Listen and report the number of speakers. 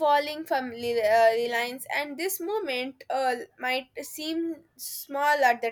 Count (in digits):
1